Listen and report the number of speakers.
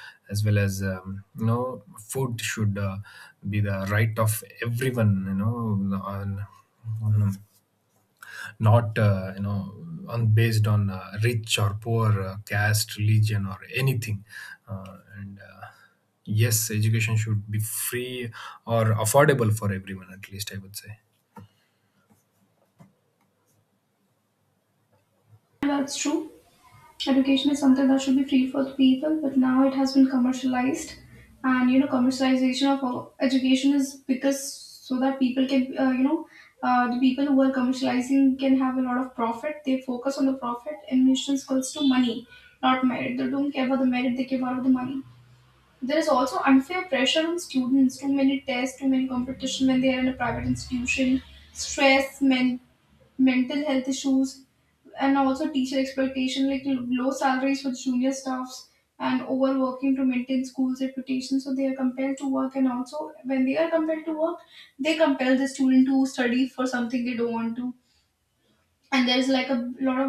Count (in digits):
2